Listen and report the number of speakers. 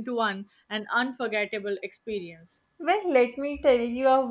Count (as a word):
two